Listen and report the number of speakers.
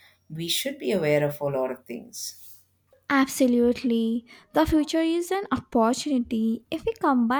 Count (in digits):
2